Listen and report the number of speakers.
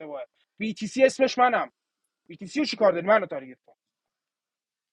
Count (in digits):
1